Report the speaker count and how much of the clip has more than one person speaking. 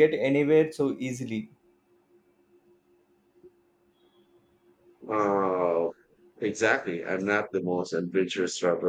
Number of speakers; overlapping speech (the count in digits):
2, no overlap